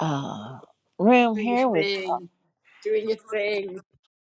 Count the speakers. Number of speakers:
two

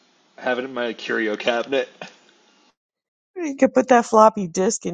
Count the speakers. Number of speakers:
two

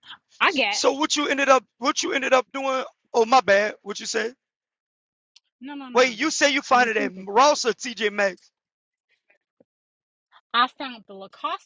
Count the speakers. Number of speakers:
two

